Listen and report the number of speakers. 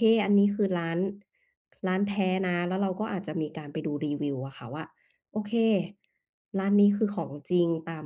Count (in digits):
1